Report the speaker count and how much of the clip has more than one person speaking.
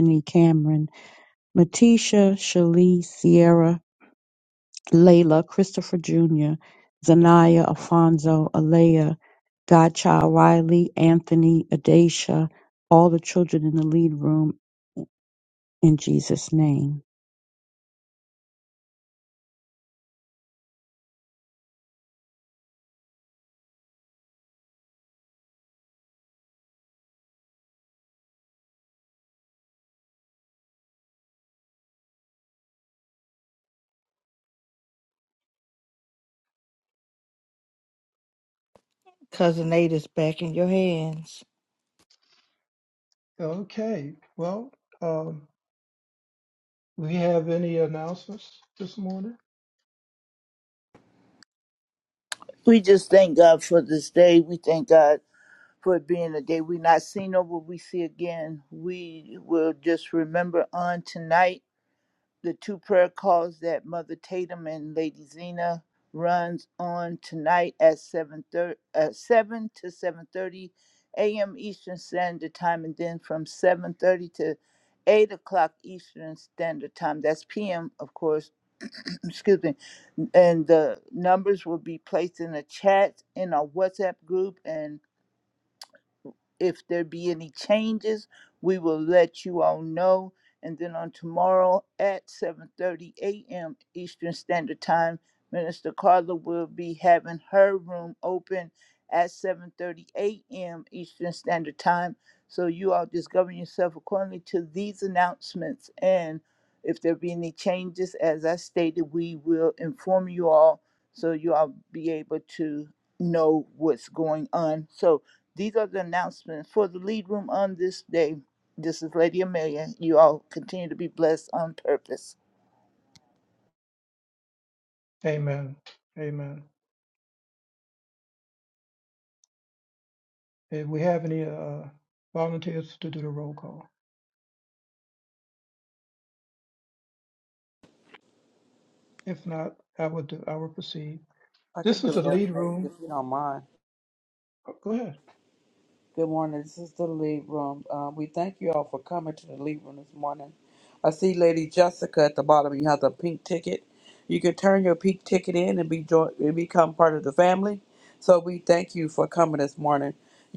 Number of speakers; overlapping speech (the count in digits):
5, about 1%